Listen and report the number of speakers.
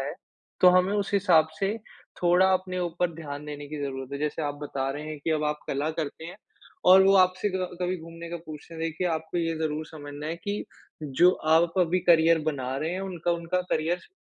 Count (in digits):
1